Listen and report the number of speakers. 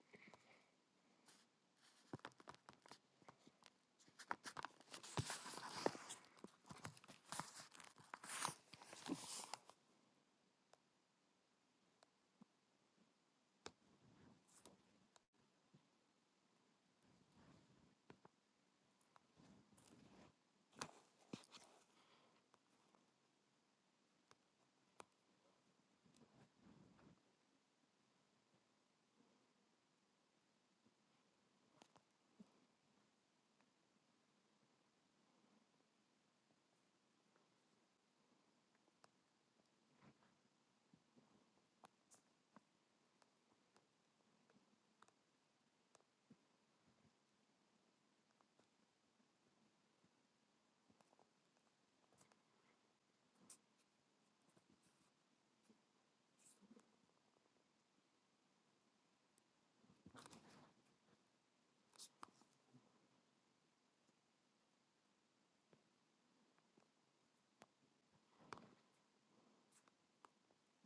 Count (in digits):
0